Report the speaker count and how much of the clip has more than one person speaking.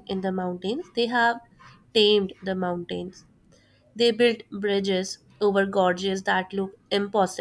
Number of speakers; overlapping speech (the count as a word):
one, no overlap